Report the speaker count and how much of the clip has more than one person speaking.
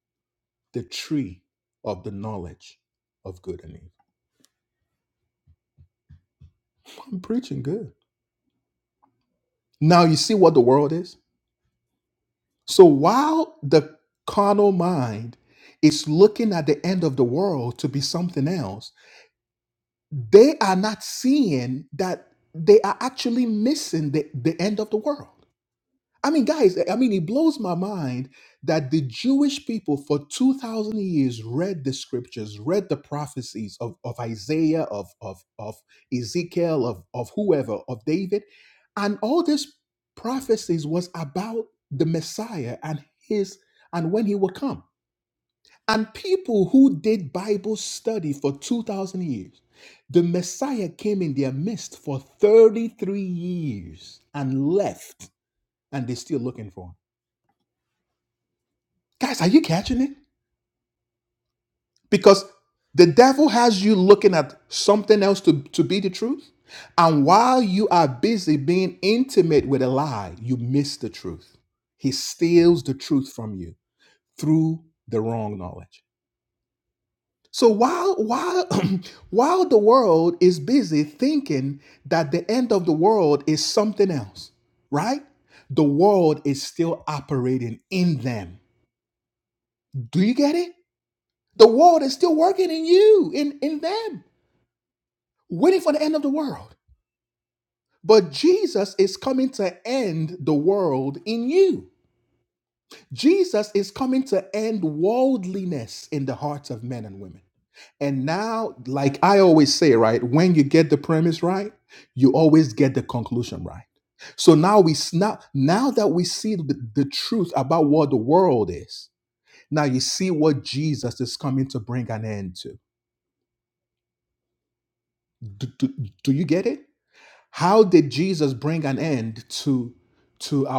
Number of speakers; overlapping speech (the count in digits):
1, no overlap